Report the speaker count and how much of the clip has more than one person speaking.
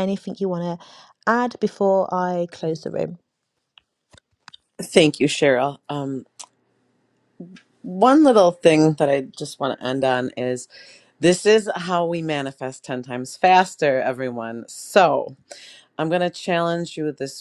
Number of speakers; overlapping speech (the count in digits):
2, no overlap